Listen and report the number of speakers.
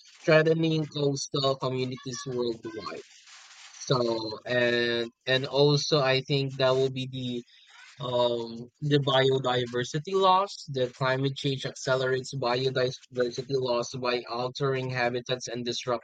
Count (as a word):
one